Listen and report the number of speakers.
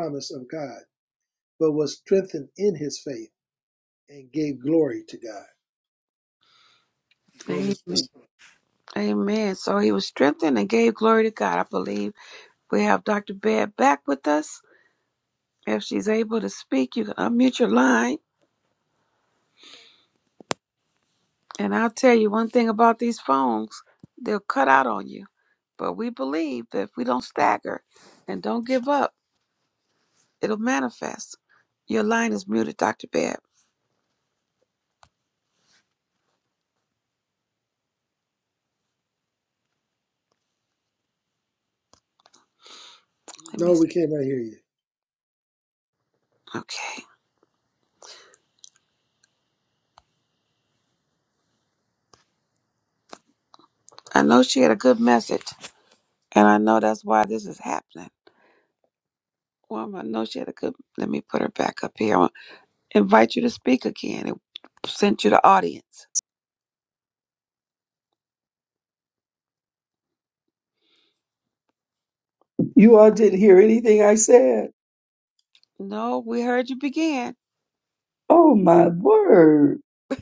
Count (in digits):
3